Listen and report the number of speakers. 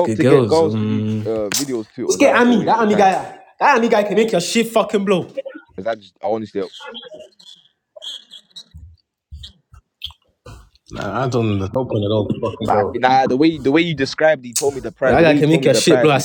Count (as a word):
three